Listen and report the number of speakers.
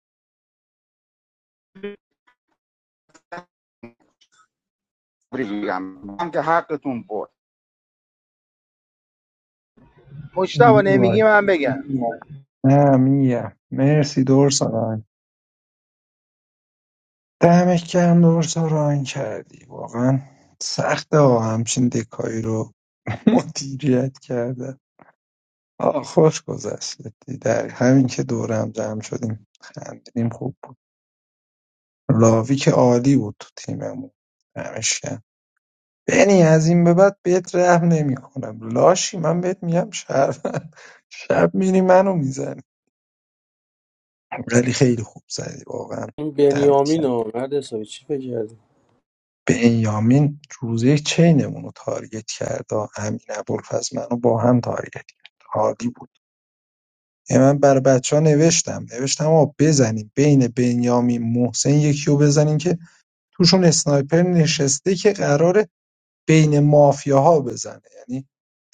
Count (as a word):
four